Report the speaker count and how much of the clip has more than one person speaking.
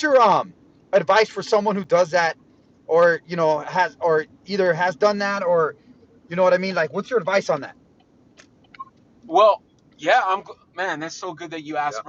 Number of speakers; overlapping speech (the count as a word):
two, about 1%